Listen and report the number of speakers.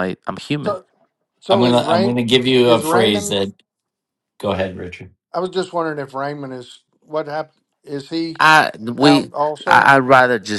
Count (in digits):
3